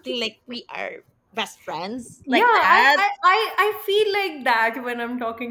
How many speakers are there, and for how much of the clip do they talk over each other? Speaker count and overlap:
2, about 13%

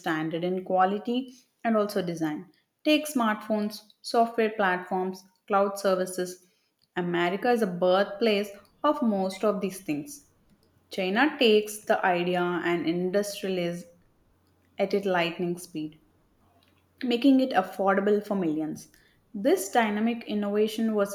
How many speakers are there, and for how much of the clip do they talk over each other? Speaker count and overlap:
1, no overlap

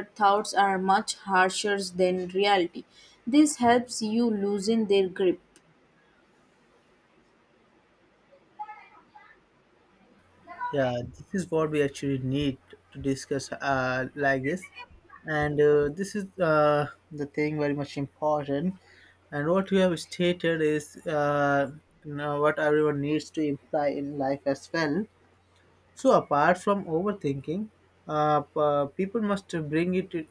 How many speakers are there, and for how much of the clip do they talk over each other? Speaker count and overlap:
2, no overlap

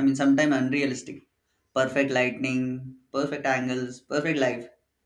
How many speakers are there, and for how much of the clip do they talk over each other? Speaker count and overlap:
1, no overlap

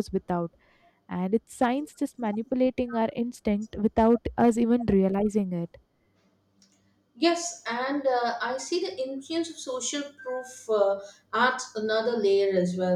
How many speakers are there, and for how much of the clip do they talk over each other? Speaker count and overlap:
2, no overlap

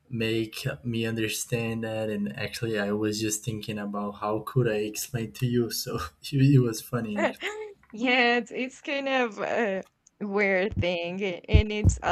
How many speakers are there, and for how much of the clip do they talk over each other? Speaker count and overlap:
2, no overlap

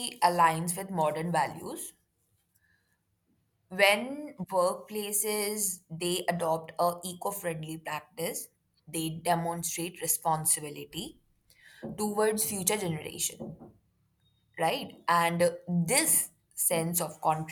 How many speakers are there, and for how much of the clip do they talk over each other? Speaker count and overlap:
1, no overlap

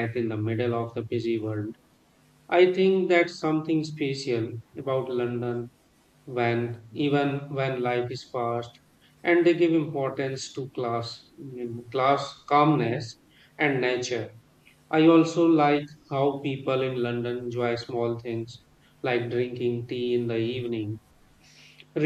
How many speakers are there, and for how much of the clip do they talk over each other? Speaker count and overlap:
1, no overlap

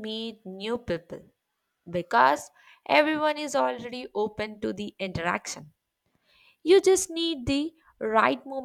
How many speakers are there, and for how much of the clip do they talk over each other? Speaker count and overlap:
1, no overlap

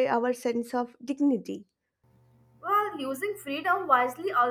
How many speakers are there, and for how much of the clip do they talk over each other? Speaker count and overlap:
2, no overlap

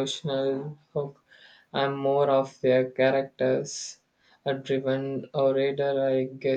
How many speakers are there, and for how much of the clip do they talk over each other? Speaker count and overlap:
1, no overlap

